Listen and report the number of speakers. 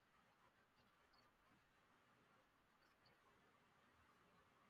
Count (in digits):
0